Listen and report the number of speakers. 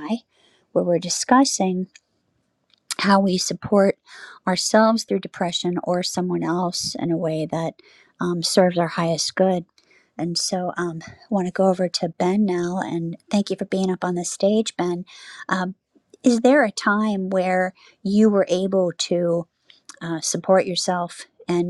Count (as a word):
one